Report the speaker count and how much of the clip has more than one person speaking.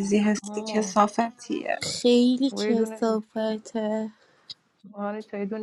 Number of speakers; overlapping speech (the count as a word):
three, about 19%